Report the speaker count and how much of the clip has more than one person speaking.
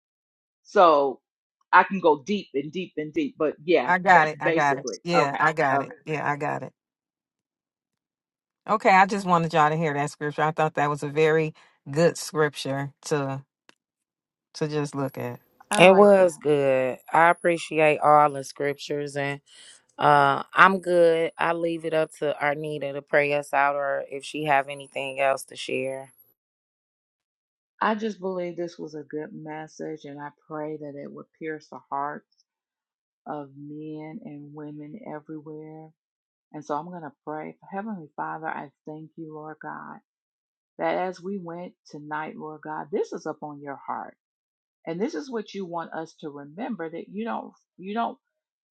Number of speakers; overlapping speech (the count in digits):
3, about 5%